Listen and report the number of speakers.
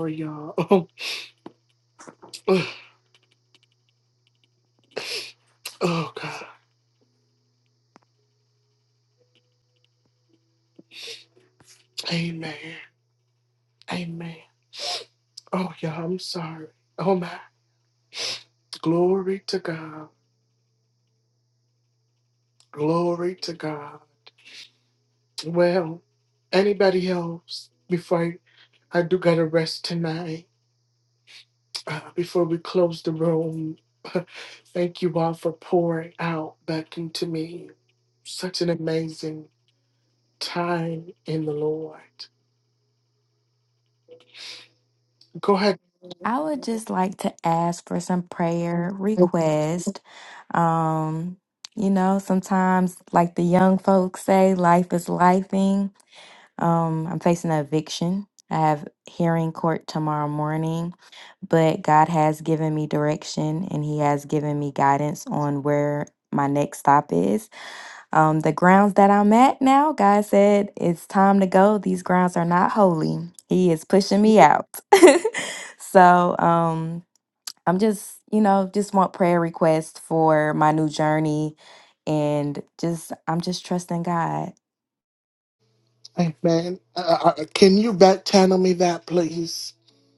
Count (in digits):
2